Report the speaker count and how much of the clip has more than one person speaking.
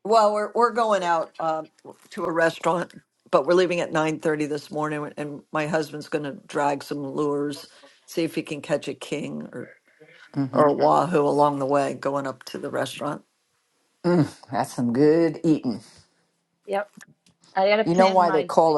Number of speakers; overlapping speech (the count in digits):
3, about 4%